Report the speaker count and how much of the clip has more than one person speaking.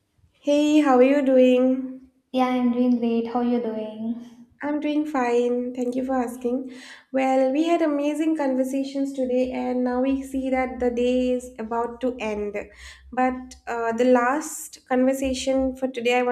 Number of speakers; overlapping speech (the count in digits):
2, no overlap